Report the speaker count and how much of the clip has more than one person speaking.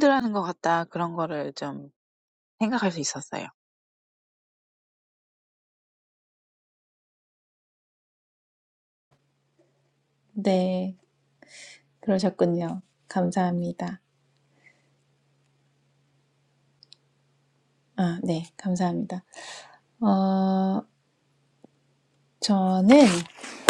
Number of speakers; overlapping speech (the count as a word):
two, no overlap